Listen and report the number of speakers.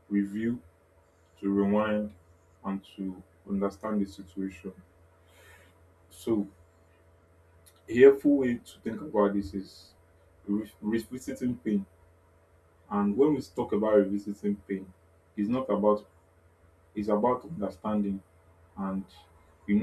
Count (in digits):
1